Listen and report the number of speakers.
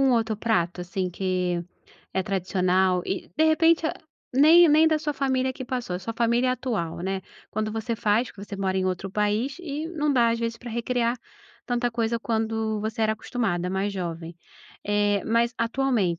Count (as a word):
one